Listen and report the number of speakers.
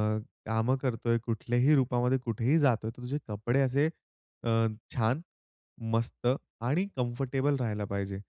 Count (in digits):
1